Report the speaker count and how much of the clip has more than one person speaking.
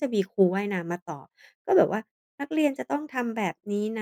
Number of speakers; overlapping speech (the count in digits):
1, no overlap